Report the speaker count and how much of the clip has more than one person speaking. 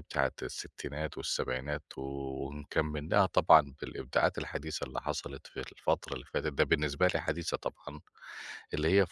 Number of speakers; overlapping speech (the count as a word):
one, no overlap